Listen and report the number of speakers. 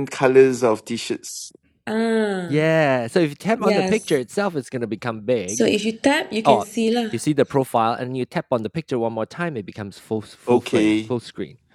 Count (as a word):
three